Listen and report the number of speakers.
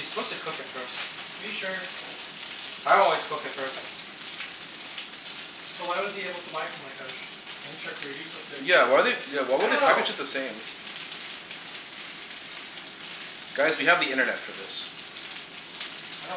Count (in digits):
3